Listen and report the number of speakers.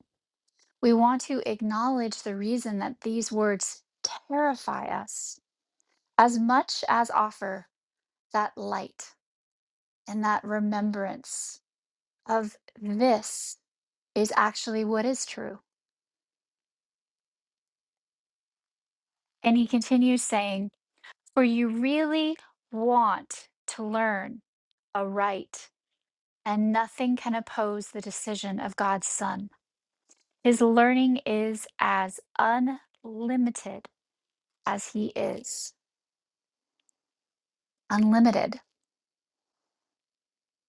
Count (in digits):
1